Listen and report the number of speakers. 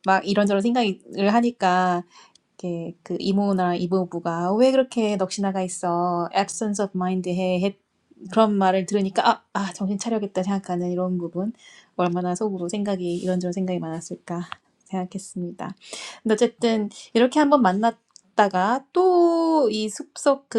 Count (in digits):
1